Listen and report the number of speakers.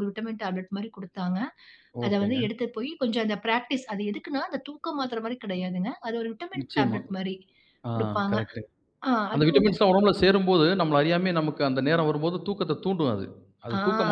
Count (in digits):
2